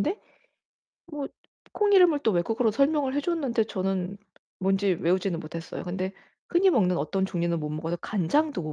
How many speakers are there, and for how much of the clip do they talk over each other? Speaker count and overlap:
one, no overlap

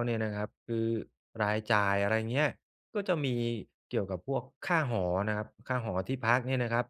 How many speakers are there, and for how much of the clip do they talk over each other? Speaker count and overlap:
one, no overlap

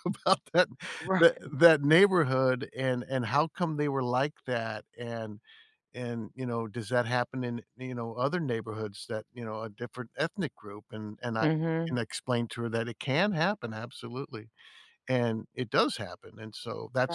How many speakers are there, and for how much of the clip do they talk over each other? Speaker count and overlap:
two, about 3%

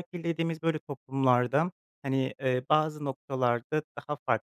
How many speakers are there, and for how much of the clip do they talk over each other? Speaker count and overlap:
one, no overlap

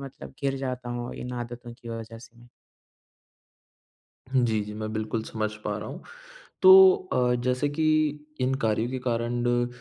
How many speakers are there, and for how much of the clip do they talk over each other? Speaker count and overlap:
two, no overlap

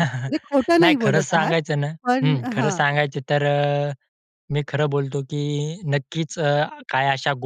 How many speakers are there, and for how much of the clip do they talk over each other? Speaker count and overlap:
two, about 18%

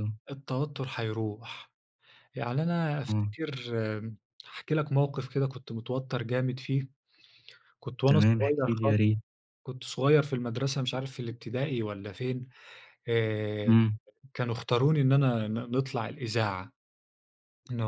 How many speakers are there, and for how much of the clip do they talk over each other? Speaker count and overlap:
two, about 7%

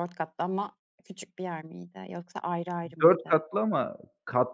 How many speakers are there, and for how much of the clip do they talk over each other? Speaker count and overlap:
two, about 8%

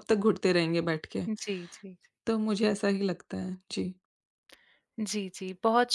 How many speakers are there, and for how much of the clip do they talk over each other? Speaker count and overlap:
two, no overlap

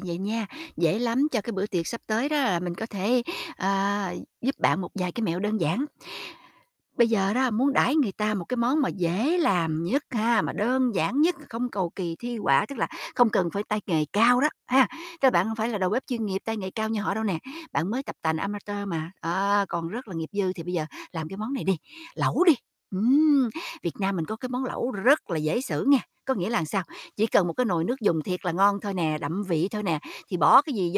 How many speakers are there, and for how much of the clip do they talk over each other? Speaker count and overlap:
one, no overlap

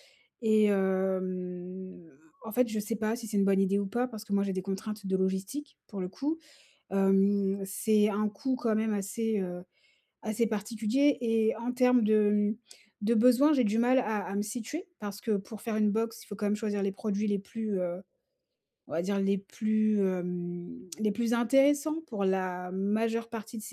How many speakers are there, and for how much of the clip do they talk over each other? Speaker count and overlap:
one, no overlap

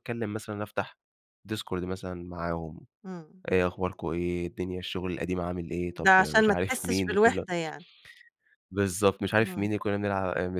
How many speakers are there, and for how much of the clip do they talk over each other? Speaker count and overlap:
two, about 16%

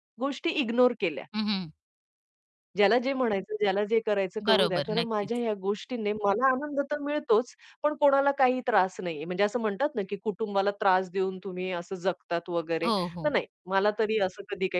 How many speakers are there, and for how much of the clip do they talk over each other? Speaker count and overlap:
two, about 7%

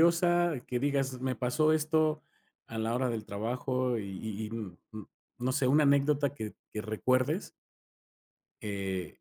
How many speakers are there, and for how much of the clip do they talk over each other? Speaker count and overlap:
one, no overlap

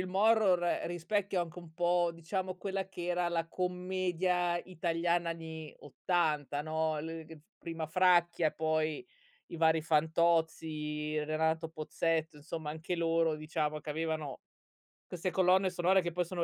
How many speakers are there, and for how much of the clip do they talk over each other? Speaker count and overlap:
one, no overlap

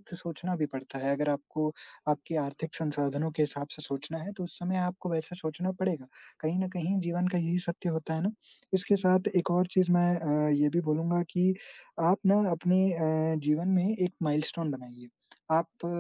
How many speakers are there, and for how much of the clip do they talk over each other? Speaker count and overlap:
one, no overlap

